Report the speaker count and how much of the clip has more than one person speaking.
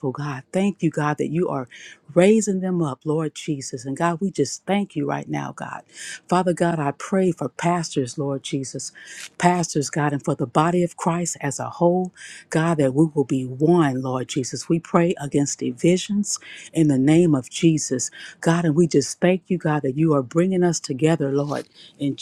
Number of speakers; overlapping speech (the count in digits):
1, no overlap